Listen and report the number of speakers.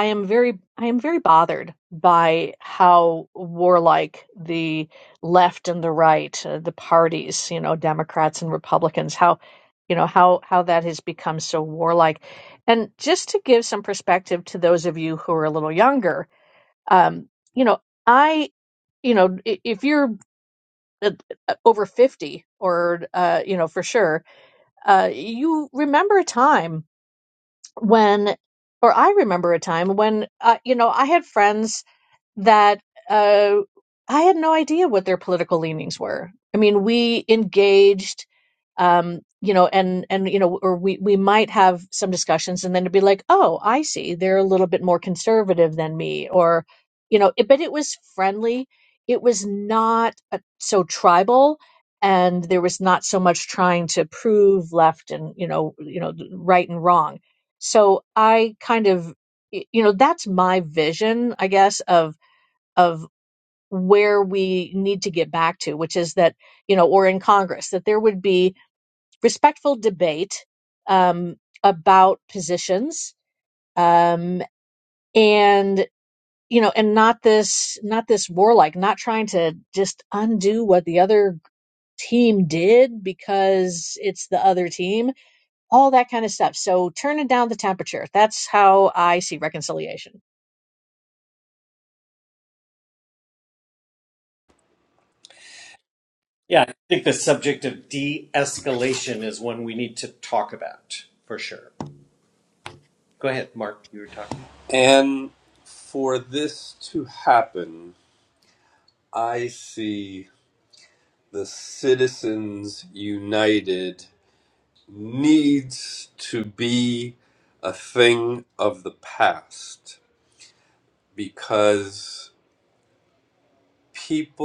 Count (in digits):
3